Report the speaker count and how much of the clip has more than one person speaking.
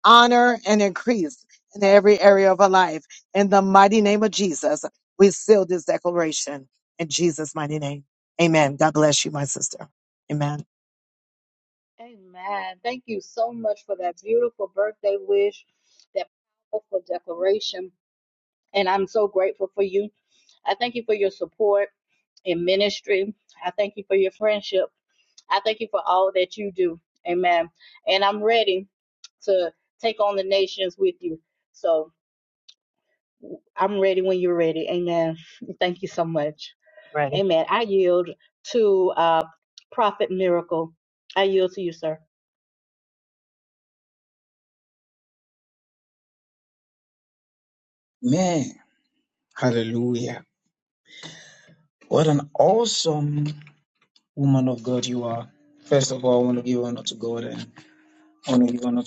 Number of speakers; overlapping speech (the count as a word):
three, under 1%